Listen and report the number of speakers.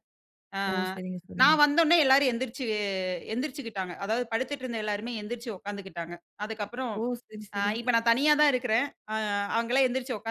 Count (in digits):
2